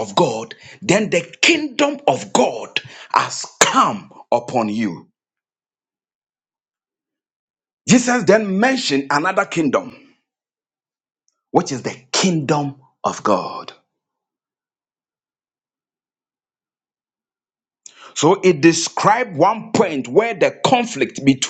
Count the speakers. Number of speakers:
one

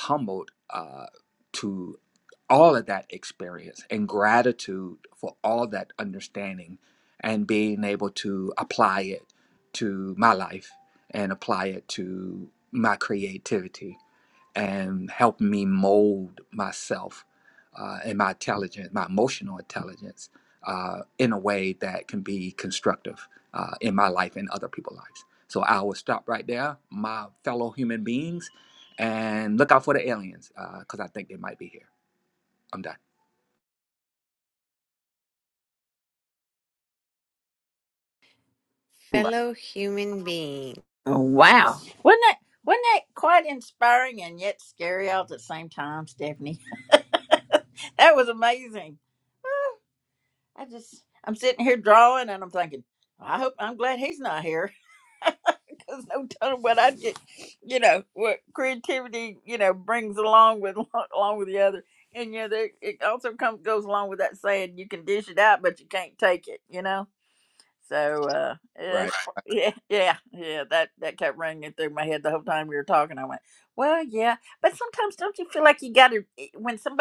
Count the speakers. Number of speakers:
three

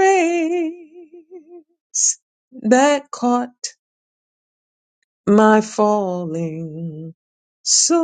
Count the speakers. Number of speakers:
one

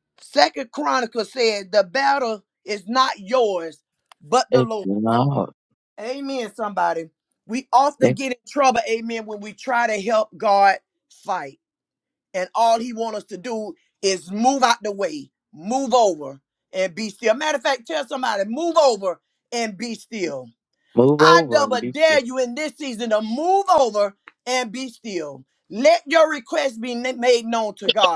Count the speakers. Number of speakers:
two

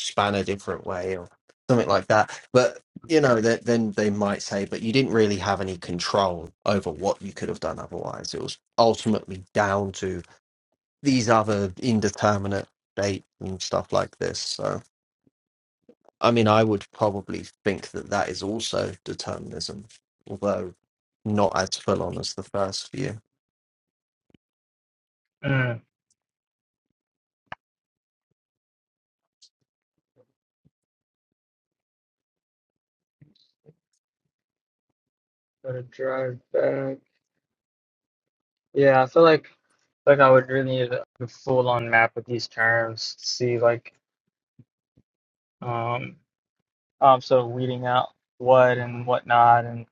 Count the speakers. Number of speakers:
two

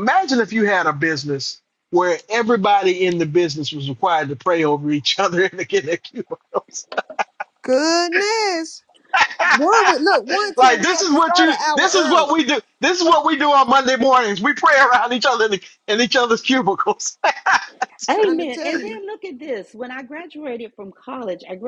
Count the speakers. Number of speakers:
three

